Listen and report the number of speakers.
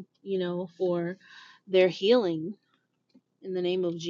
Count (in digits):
1